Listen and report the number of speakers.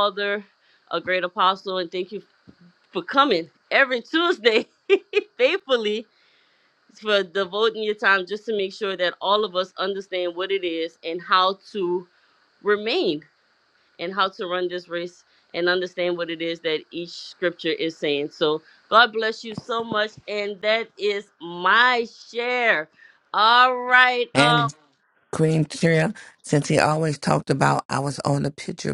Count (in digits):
2